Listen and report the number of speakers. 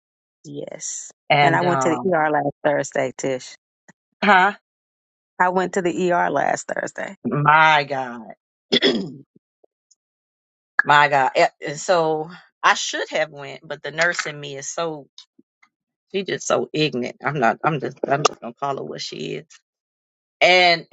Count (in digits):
2